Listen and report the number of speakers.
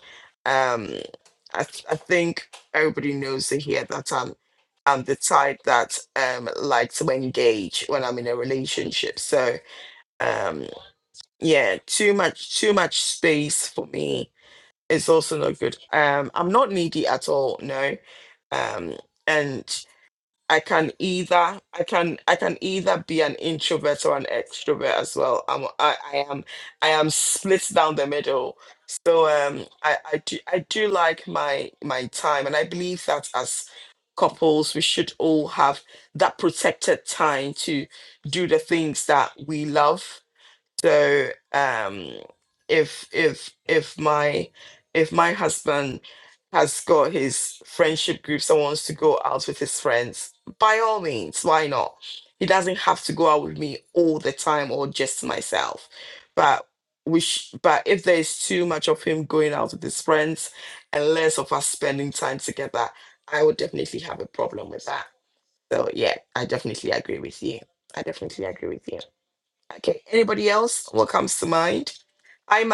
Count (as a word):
one